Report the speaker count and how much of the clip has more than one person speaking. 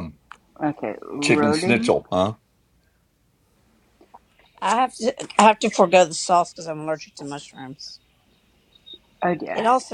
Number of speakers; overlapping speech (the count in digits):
3, about 8%